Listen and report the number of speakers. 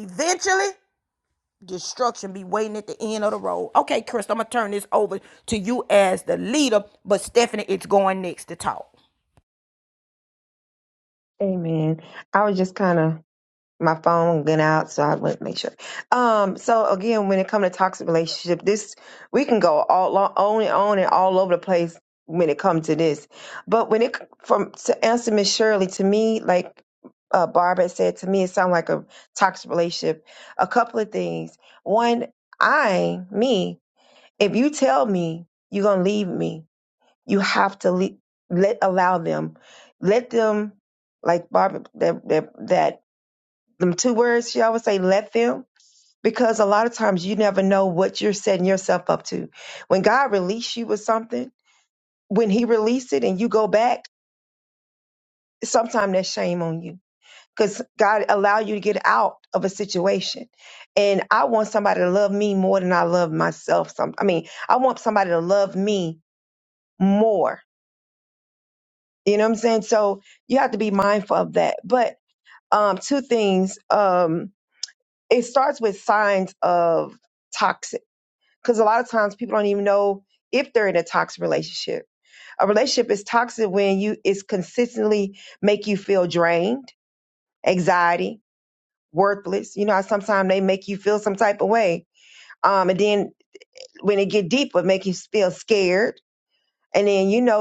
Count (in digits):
2